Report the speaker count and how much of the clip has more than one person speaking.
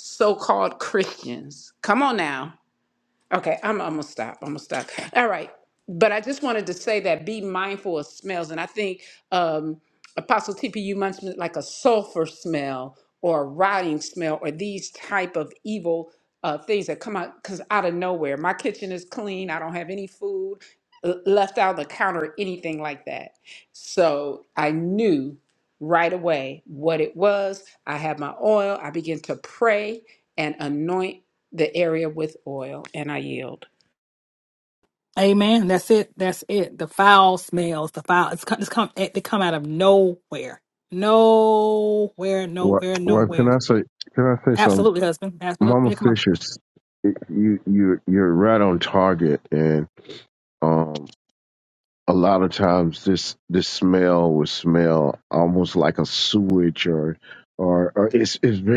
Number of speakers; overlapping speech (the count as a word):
three, about 3%